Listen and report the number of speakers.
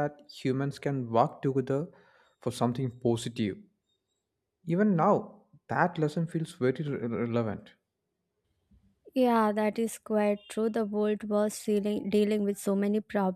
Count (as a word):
two